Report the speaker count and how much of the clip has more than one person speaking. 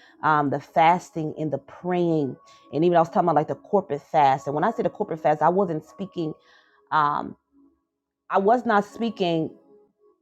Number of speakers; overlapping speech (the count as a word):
one, no overlap